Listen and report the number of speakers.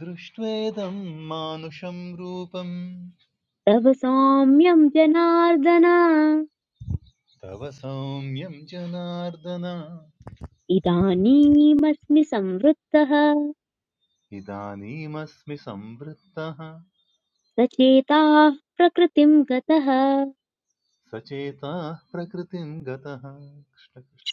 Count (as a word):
two